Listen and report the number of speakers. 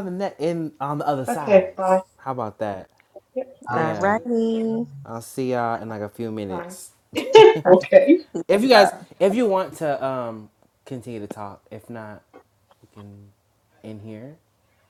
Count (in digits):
3